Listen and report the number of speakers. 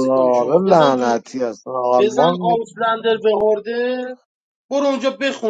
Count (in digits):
2